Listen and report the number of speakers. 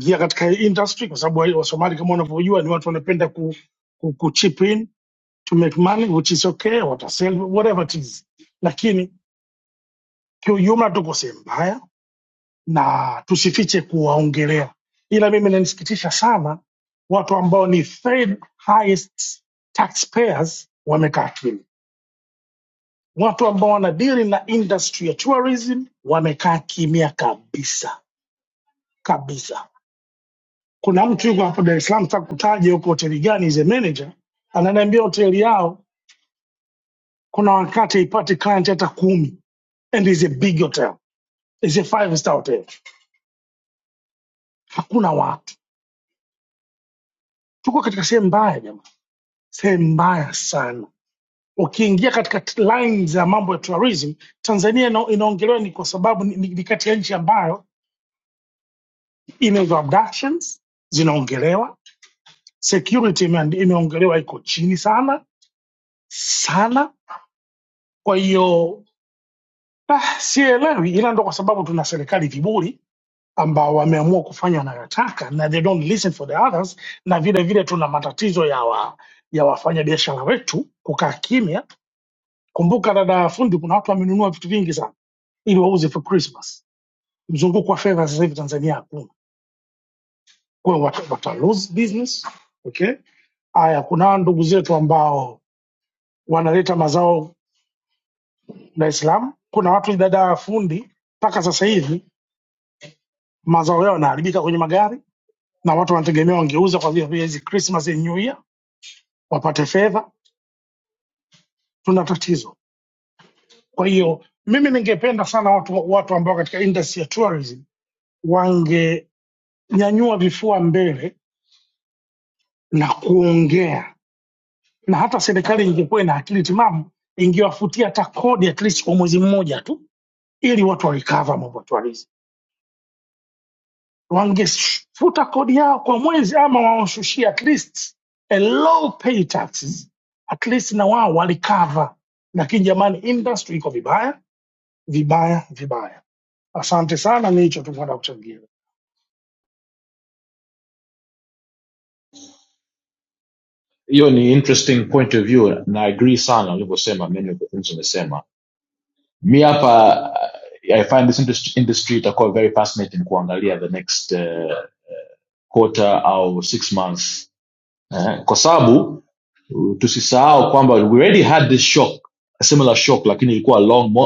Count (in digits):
2